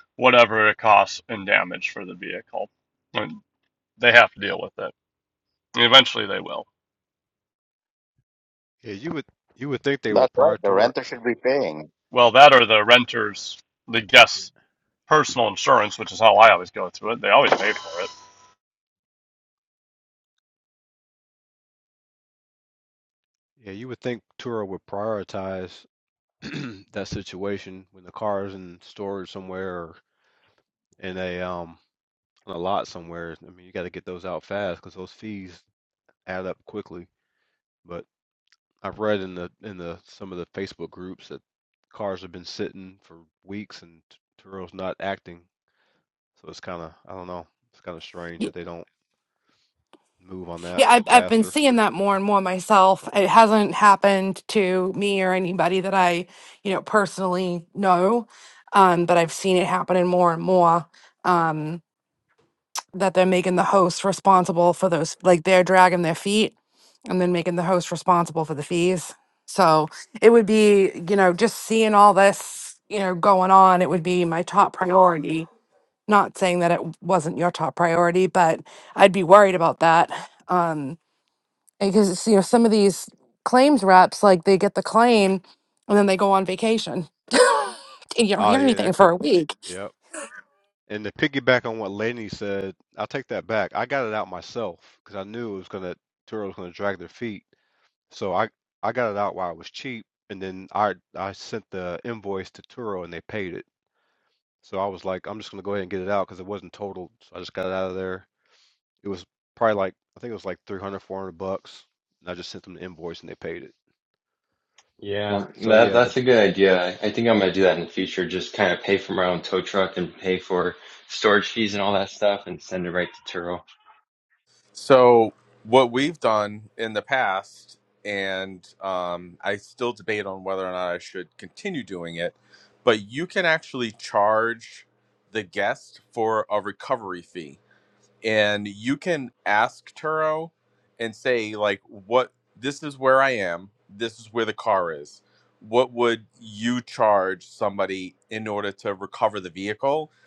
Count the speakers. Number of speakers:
six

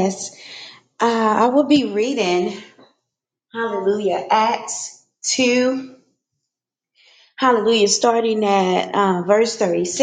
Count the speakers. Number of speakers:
one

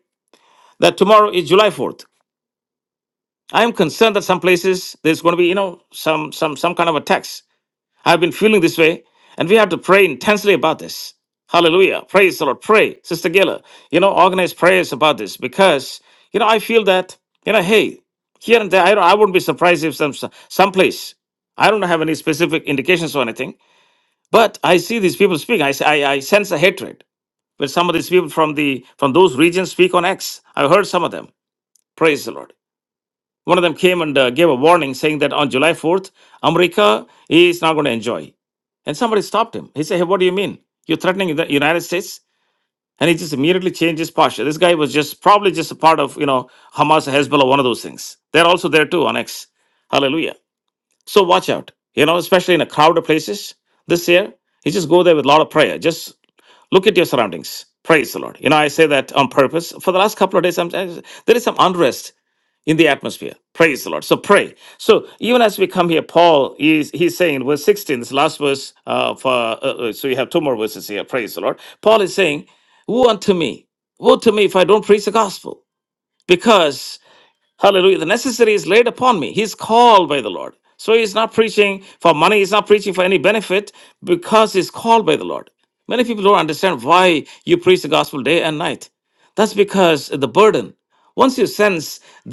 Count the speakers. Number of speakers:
one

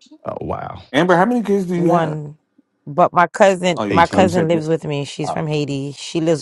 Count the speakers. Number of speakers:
three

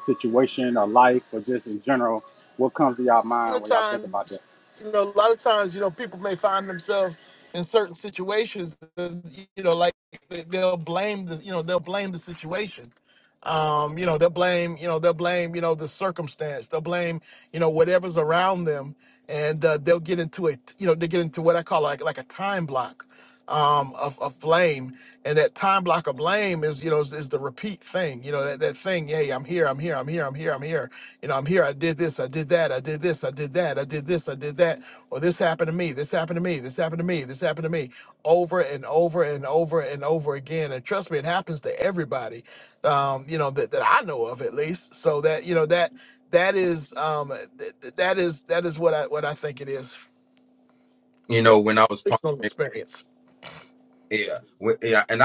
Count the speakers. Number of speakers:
three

